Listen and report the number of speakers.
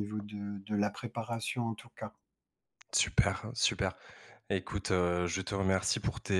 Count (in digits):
2